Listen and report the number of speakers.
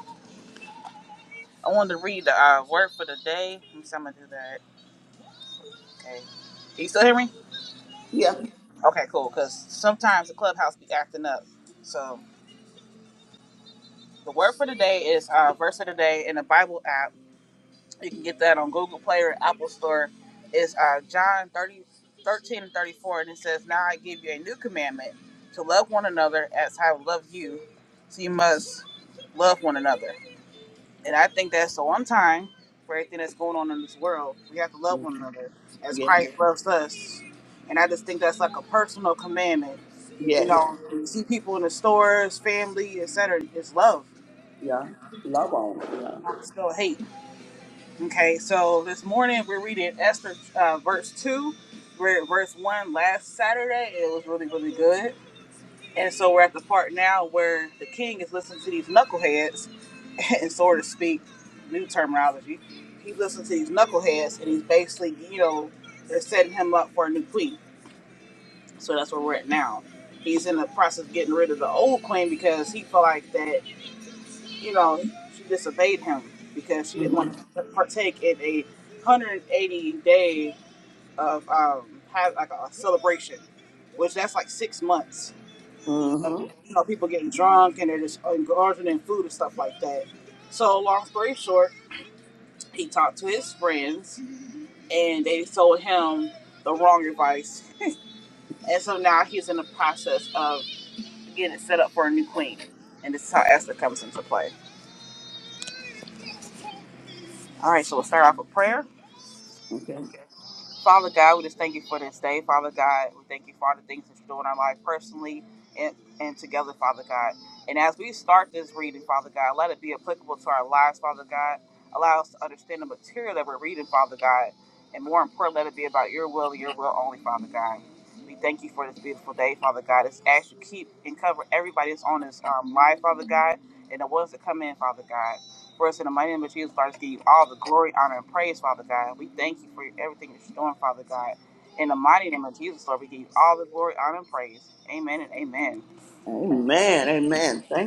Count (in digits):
2